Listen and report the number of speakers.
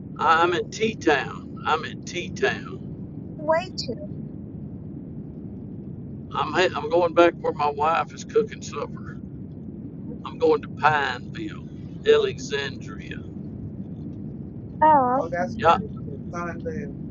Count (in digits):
3